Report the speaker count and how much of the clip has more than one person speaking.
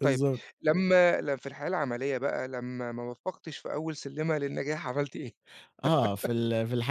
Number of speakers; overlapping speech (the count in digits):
2, about 2%